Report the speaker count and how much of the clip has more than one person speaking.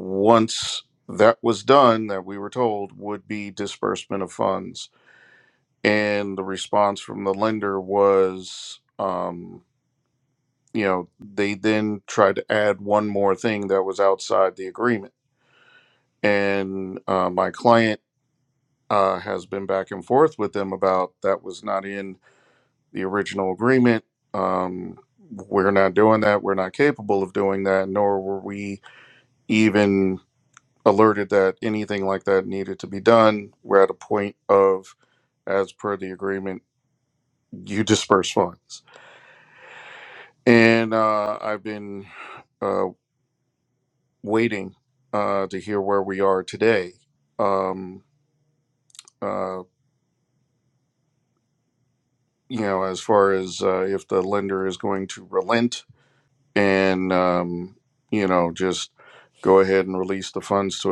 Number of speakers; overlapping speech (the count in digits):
1, no overlap